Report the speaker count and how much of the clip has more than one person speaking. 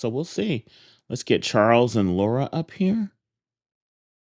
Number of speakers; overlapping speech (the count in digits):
1, no overlap